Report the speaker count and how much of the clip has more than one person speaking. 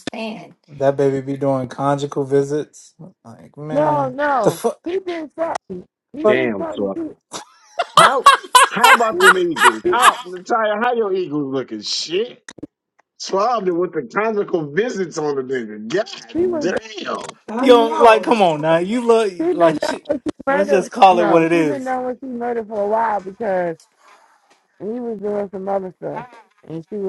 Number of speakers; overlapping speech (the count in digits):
4, about 18%